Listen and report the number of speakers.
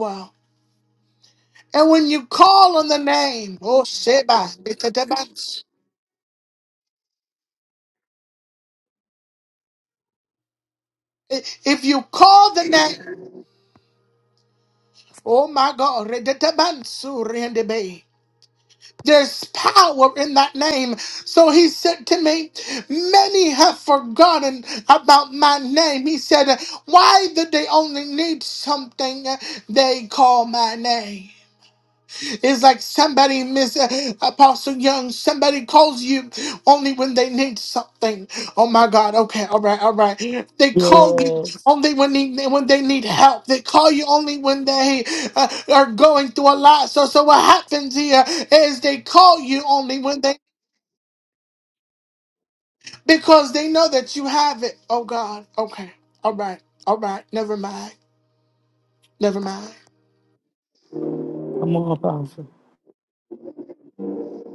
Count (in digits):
2